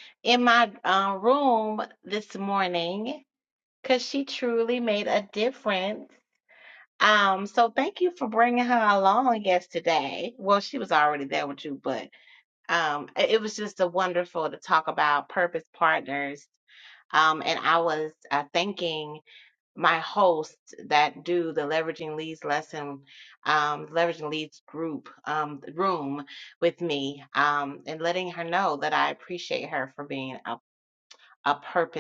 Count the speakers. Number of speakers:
1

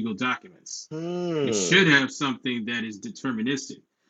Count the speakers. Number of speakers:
2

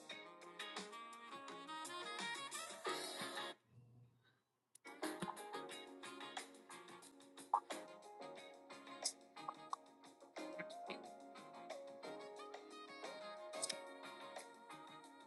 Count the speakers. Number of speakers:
0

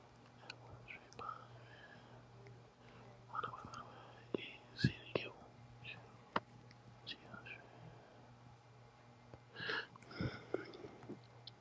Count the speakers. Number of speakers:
0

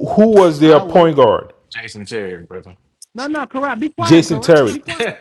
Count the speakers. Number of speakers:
3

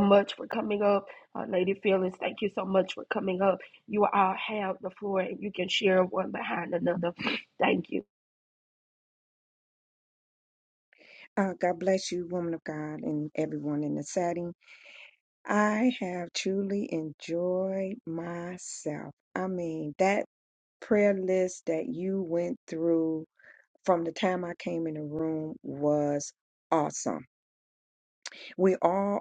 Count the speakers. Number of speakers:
2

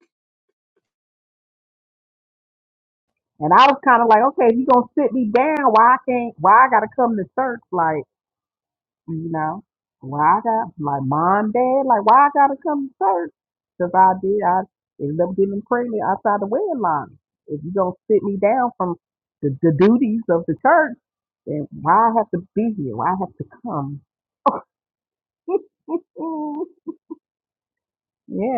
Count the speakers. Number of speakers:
1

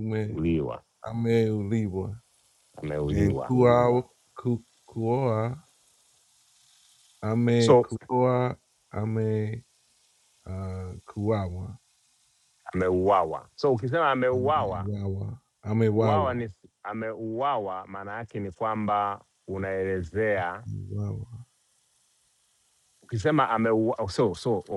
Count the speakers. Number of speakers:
2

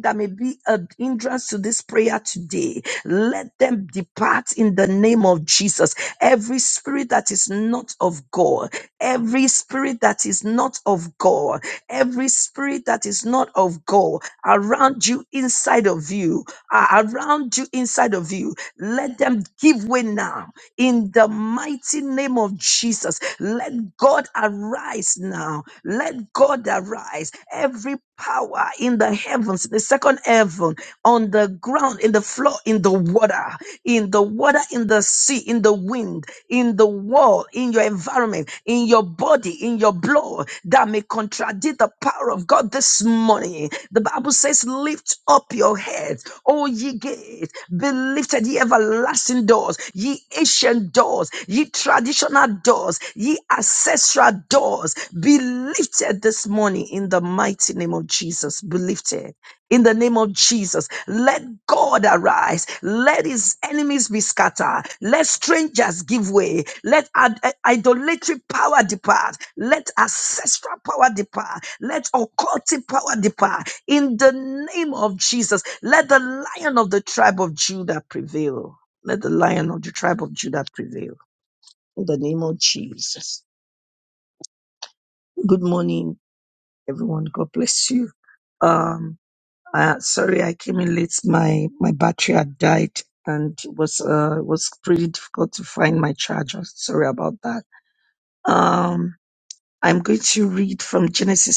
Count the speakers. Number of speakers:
1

